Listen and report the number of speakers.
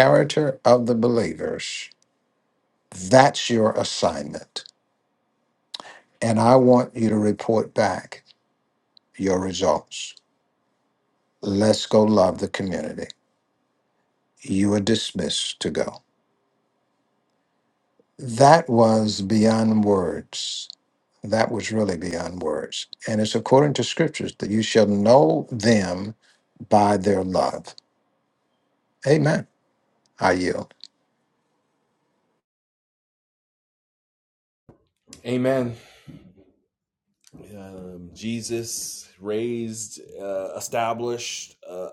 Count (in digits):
2